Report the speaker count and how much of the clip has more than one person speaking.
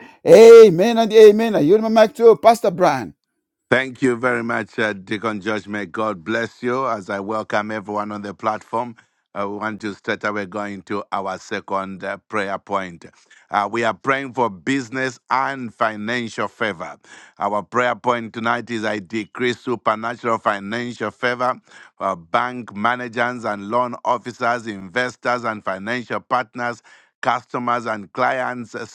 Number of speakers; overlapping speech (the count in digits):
2, no overlap